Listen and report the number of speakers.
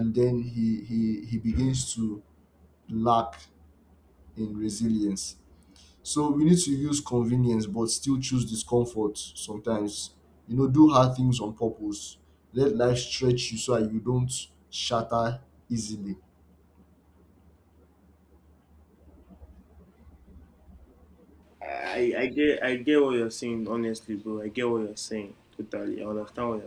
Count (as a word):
two